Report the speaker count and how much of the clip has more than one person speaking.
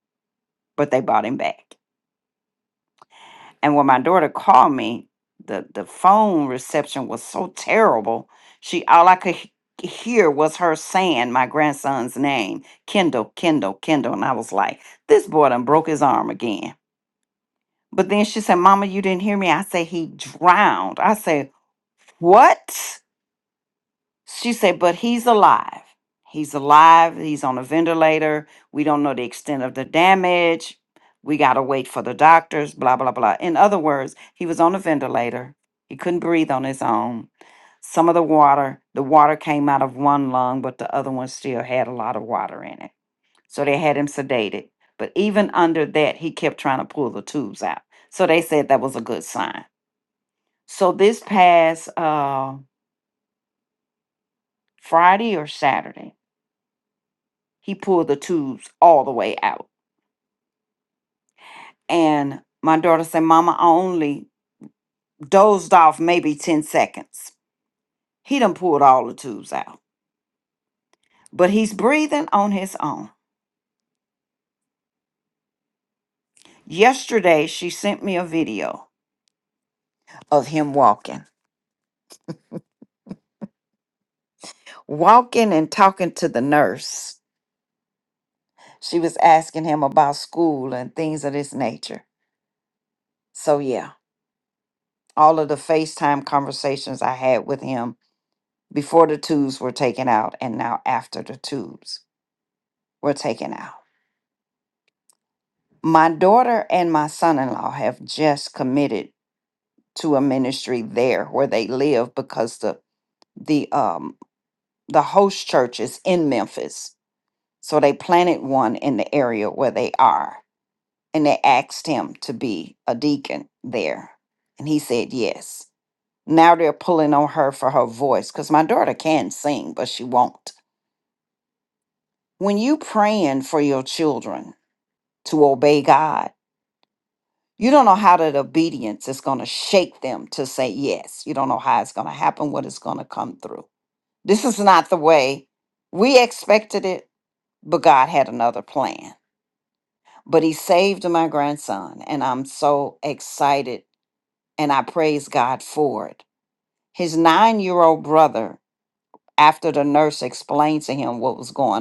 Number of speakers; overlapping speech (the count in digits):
1, no overlap